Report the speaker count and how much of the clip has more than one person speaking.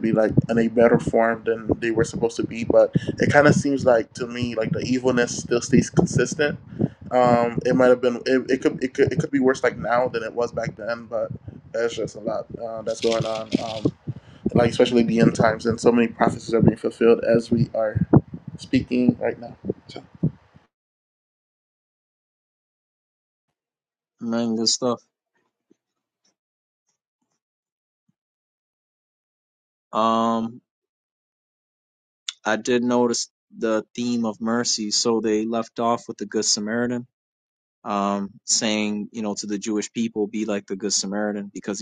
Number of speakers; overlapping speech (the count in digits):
2, no overlap